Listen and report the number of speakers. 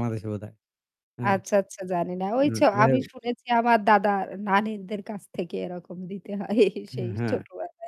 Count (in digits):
2